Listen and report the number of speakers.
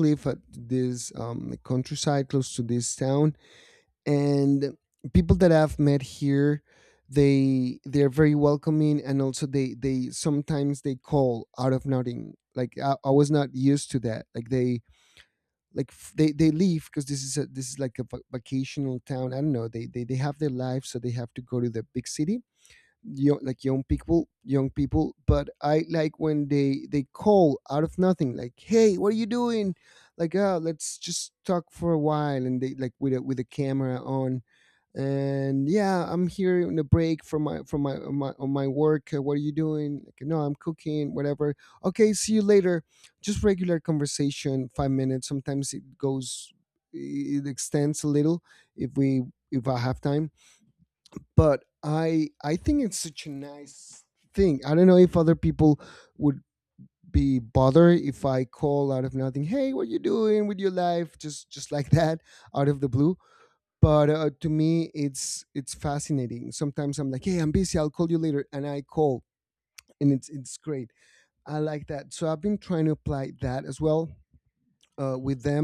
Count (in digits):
1